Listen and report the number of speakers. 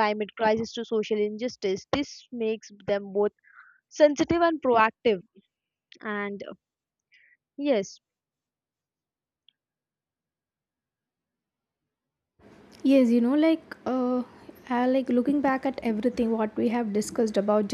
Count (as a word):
two